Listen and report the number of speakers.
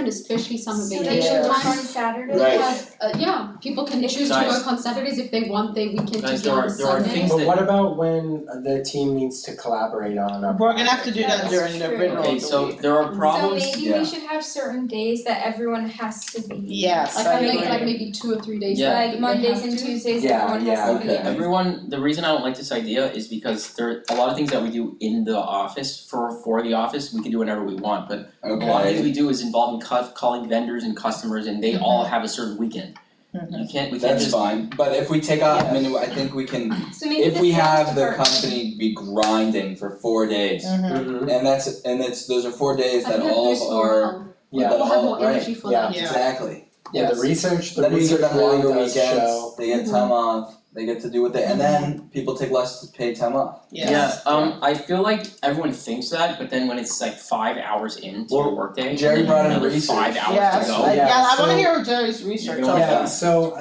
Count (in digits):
6